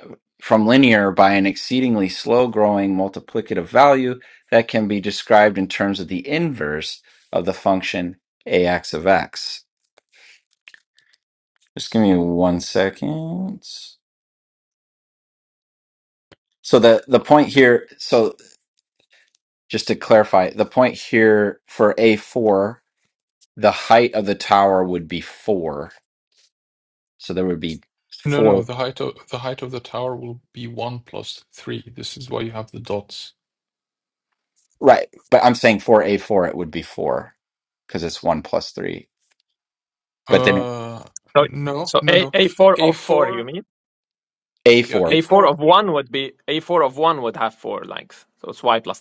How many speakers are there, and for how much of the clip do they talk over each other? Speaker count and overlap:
three, about 5%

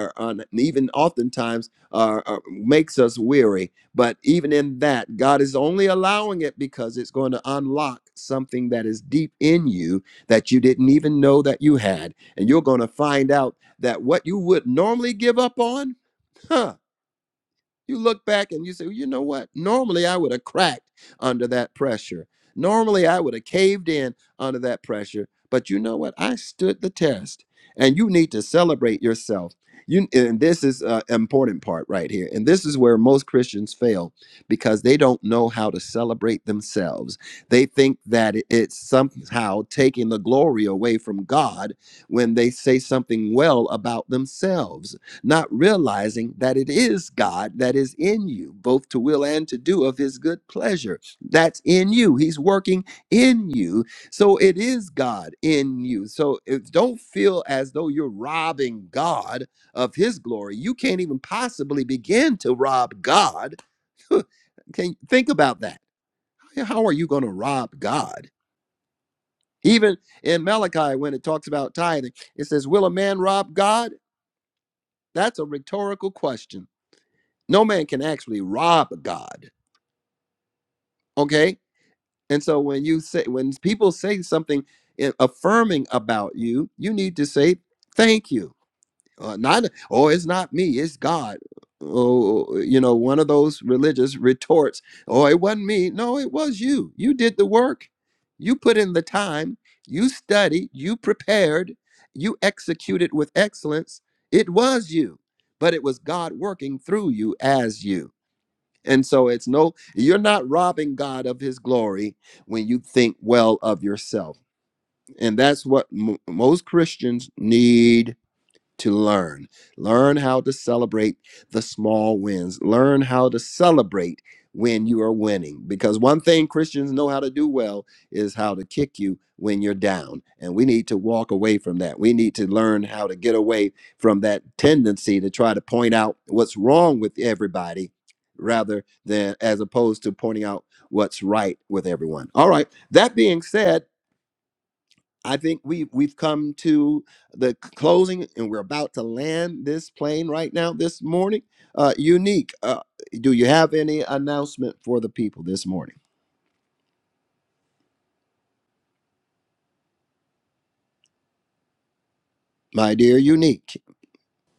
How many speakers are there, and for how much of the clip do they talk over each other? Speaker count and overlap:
one, no overlap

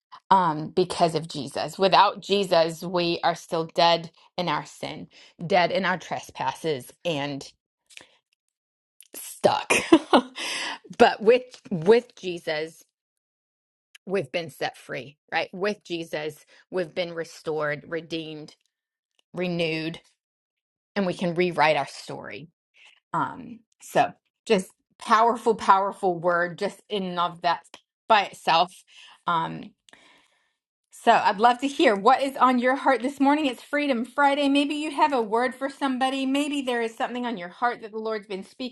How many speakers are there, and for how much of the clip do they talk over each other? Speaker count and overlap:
one, no overlap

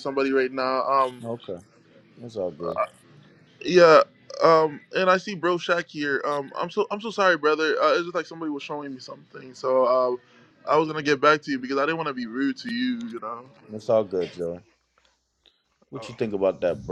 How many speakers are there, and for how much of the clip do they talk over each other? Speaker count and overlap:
two, no overlap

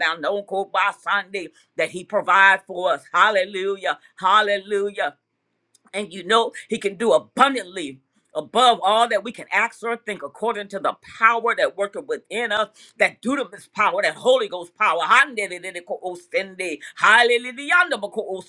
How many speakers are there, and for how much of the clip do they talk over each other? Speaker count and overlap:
one, no overlap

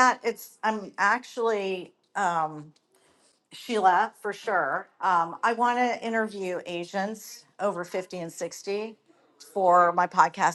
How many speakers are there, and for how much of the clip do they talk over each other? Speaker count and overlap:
one, no overlap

